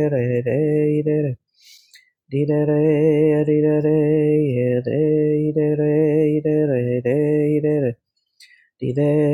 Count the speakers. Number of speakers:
1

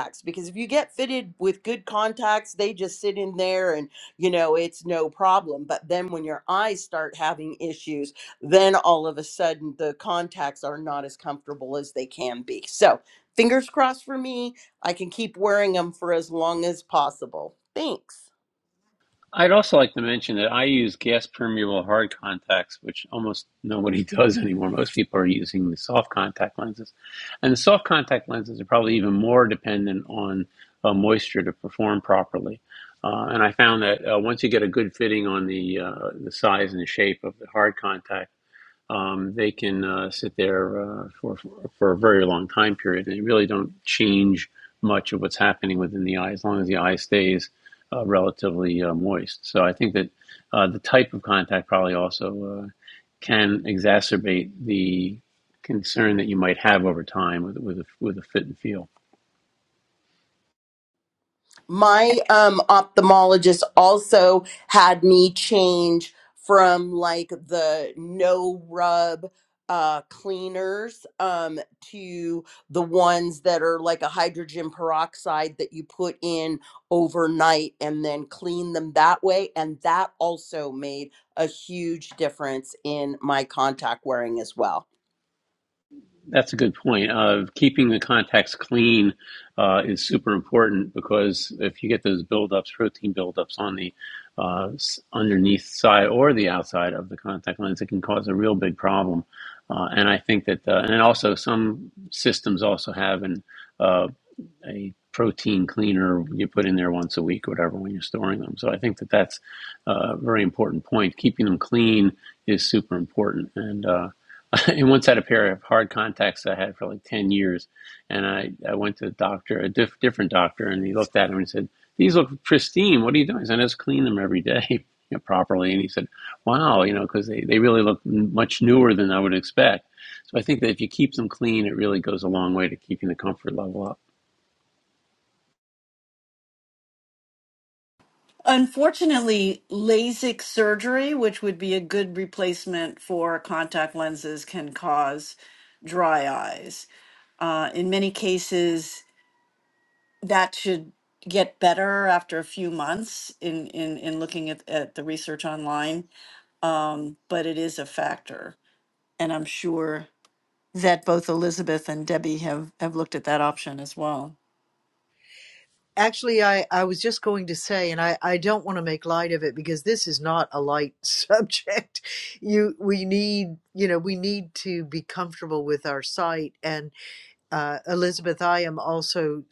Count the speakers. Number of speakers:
4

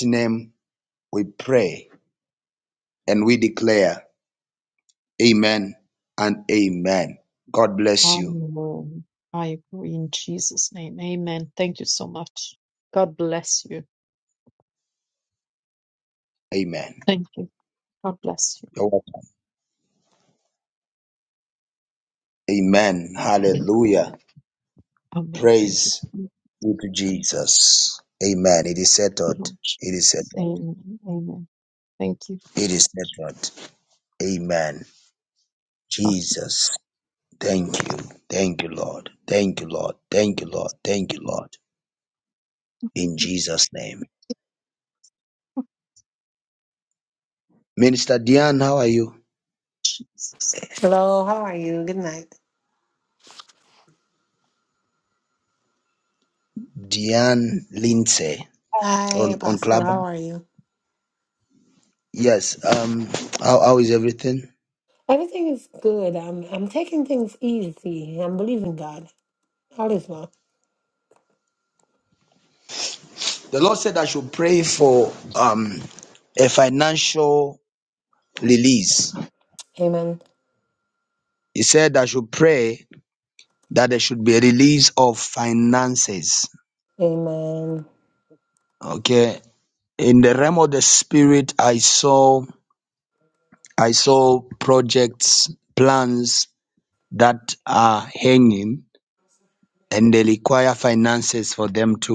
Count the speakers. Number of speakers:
3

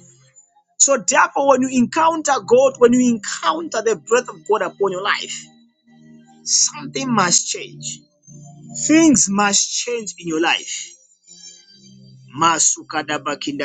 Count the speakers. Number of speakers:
1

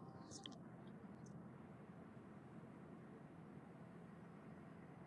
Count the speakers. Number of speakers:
0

